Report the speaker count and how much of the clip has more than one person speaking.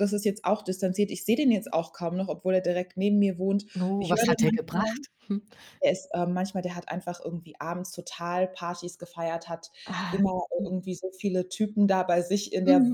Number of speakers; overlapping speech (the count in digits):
2, about 13%